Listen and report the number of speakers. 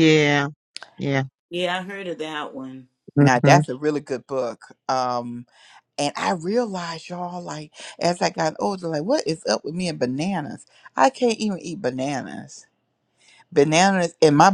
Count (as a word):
three